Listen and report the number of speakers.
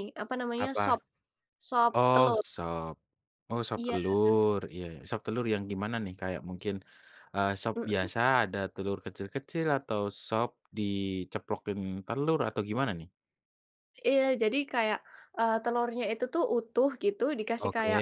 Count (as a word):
two